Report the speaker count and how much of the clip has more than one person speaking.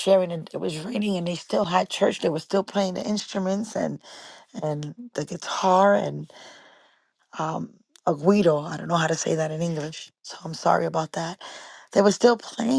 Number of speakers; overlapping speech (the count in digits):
1, no overlap